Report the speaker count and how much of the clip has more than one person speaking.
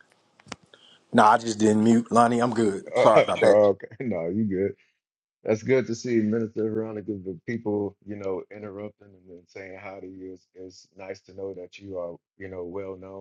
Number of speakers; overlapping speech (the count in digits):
2, about 2%